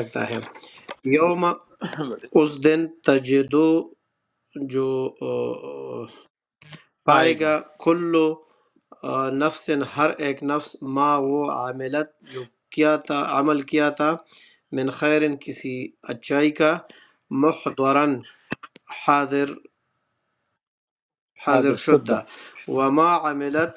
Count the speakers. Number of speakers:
2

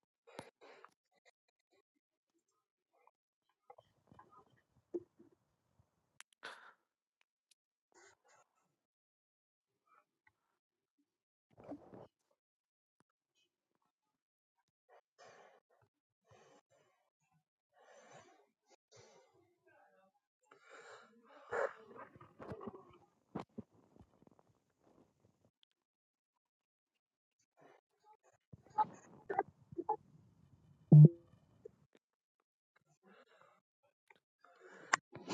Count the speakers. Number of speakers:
0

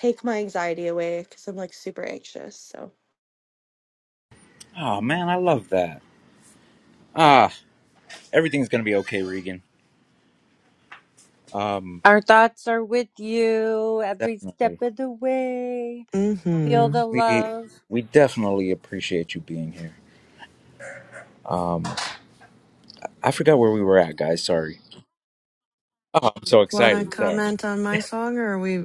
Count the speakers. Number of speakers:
4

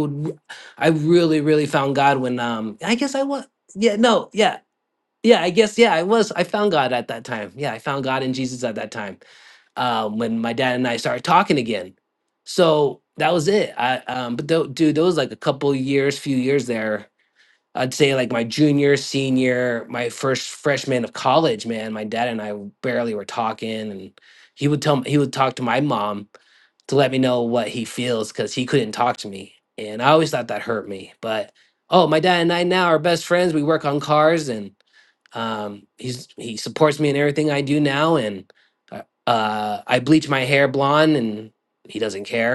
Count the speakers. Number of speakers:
1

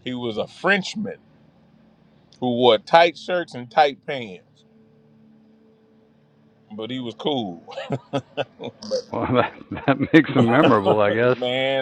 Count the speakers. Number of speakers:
2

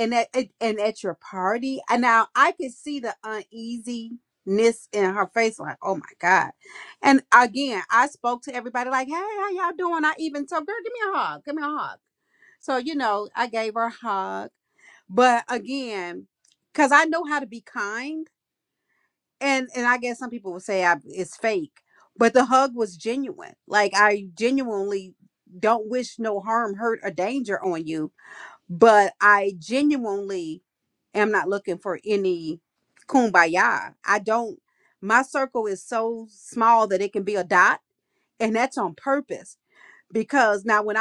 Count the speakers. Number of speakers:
1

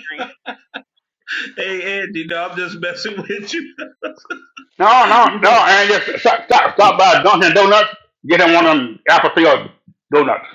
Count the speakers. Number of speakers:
2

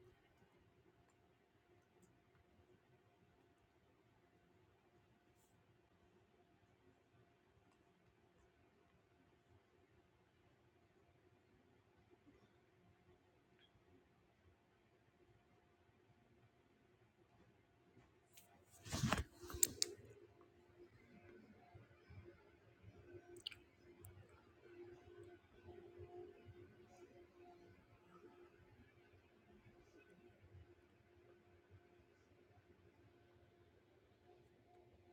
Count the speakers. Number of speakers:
0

